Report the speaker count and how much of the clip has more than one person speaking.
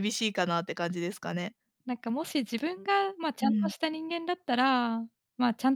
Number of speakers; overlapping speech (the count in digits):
2, about 5%